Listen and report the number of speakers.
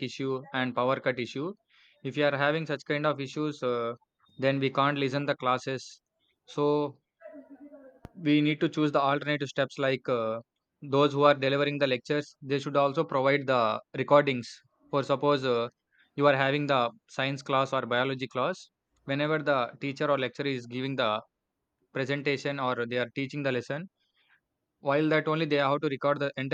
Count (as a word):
one